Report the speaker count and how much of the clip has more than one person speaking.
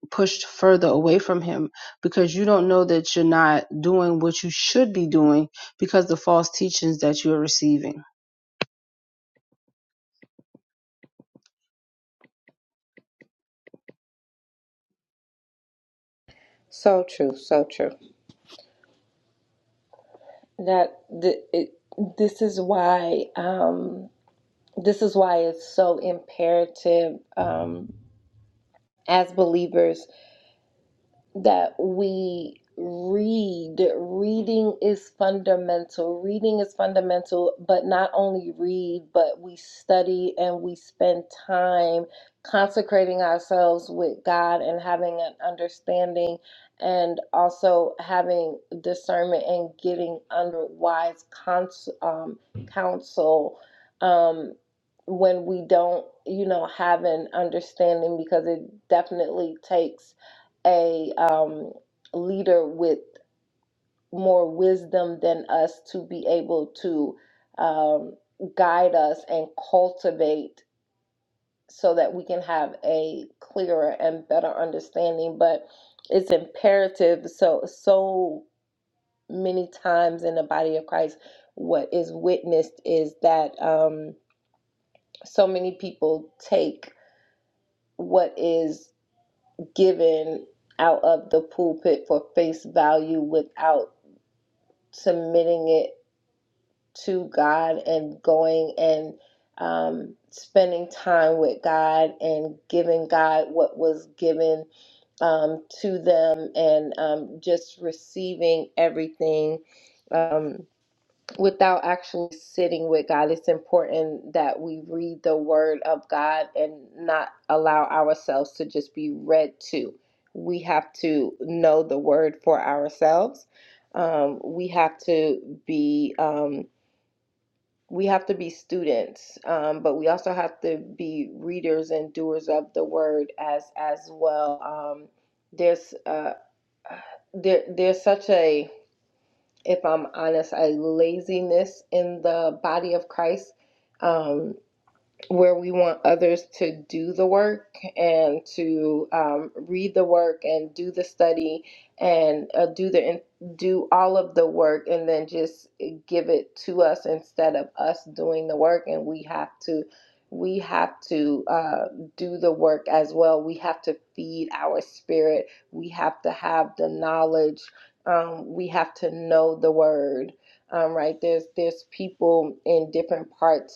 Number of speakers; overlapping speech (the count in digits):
2, no overlap